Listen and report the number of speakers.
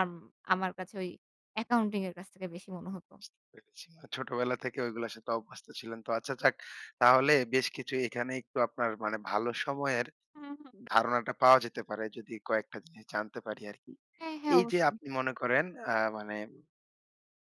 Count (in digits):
2